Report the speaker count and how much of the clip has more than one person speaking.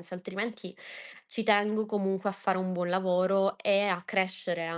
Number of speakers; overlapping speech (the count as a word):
one, no overlap